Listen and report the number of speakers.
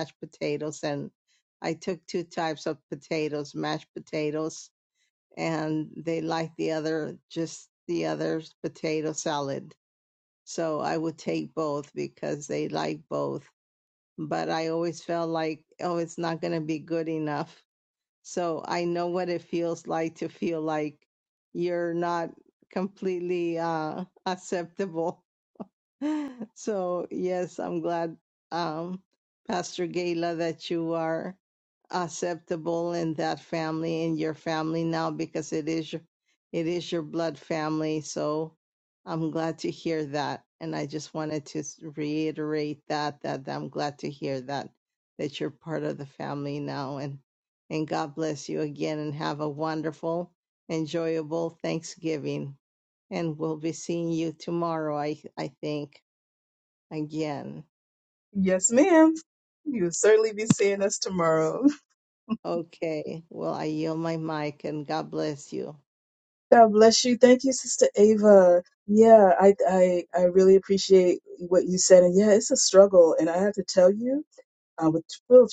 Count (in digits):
2